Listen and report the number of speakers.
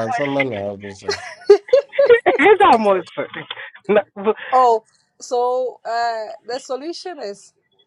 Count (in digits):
3